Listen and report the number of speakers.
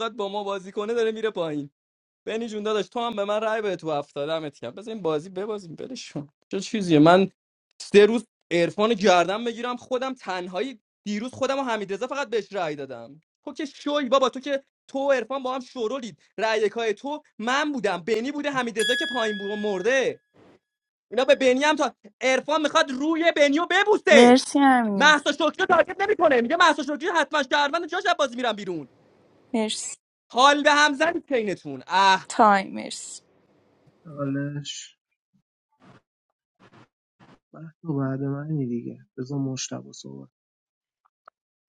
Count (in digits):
3